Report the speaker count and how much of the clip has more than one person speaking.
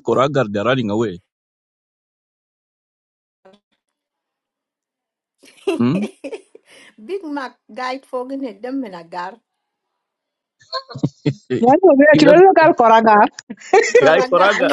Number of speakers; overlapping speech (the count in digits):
3, about 7%